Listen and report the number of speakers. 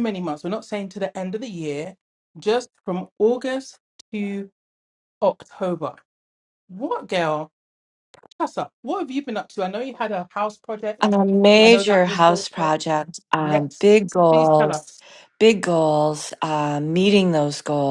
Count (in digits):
2